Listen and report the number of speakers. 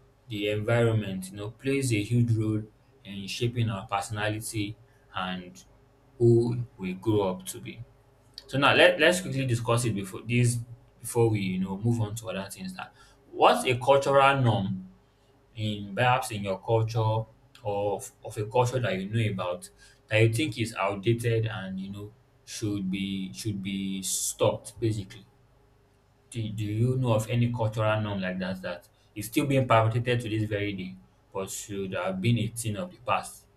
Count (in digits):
1